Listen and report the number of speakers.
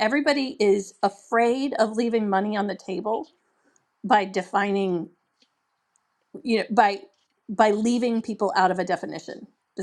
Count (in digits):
1